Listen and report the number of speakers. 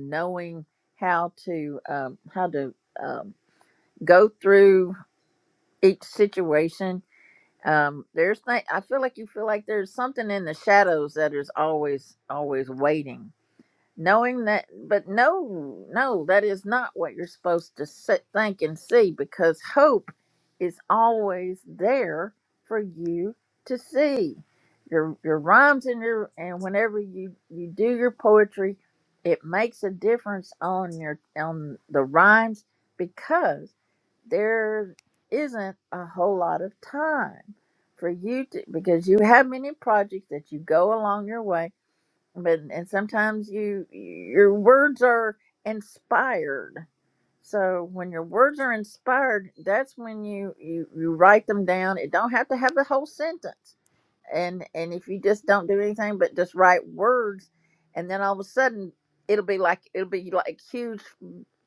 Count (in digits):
1